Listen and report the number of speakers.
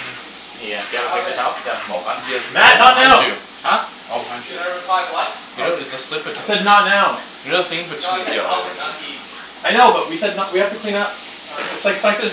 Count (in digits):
4